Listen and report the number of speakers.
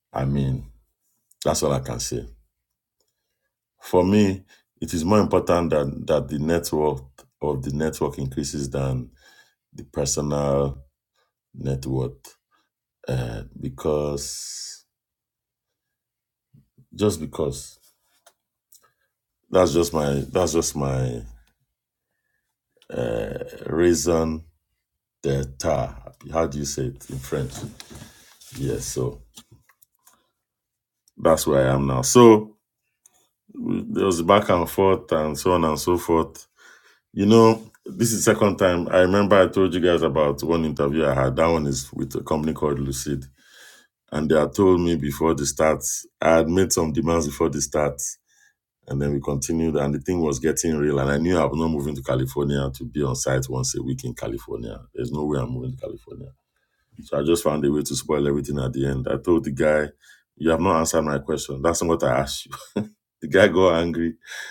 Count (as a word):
one